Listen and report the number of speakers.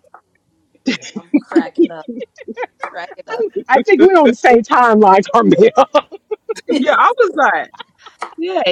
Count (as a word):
three